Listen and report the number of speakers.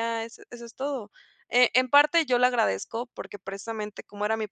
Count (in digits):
1